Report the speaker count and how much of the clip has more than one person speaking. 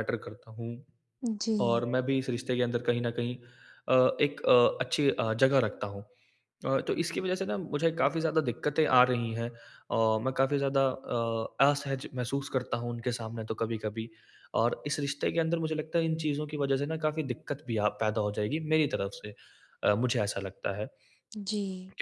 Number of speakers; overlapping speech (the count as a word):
two, about 1%